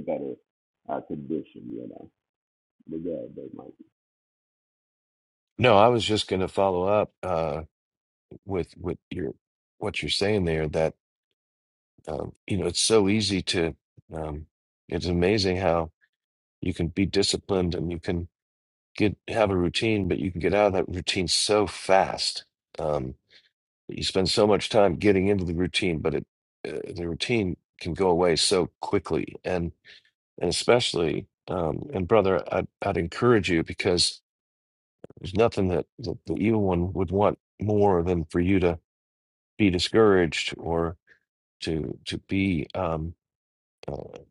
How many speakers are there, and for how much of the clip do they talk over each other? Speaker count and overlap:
2, no overlap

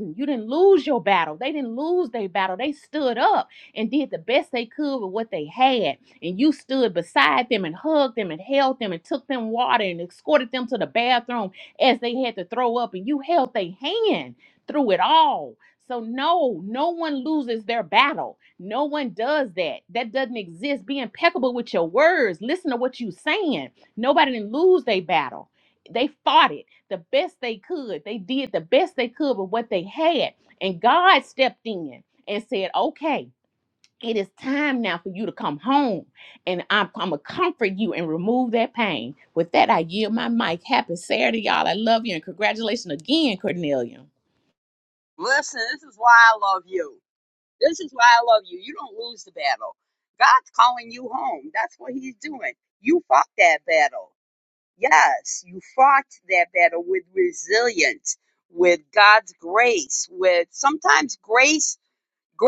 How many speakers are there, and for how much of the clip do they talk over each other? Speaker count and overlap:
2, no overlap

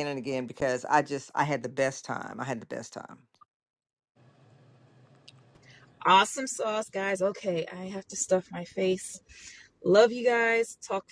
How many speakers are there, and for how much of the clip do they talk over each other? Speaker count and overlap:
2, no overlap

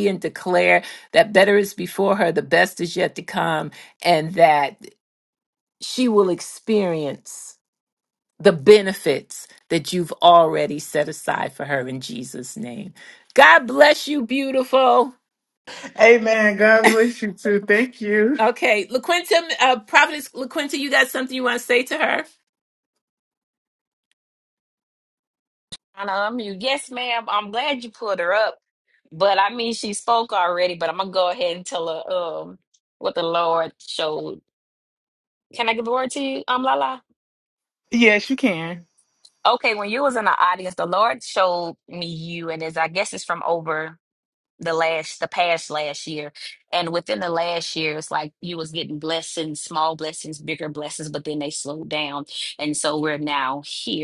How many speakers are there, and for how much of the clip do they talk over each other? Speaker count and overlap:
3, no overlap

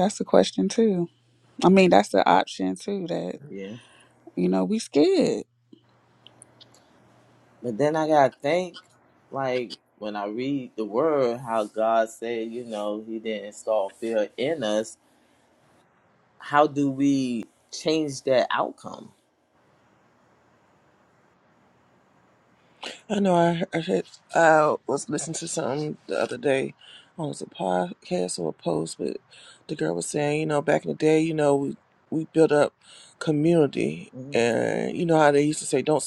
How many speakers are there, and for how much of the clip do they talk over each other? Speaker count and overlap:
3, about 1%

